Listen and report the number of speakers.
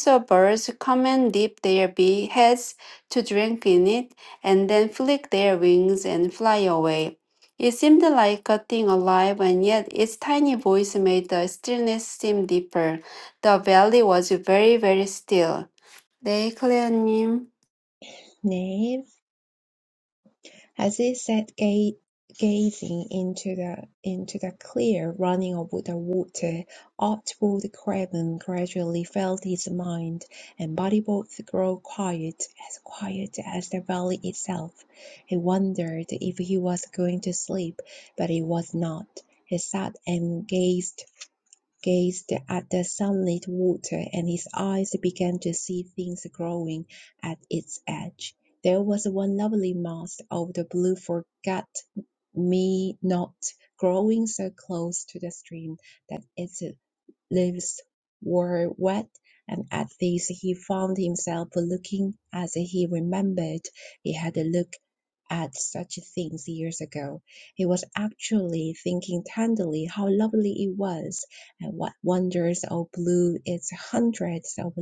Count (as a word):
two